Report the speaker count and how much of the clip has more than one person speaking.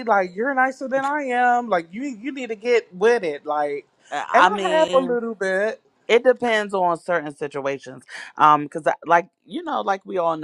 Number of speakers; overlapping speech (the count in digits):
2, about 8%